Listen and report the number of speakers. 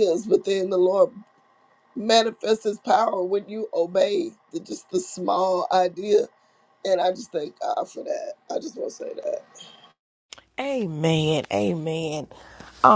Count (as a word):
two